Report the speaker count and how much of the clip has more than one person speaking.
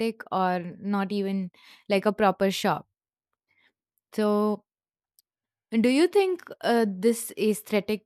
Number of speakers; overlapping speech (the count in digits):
1, no overlap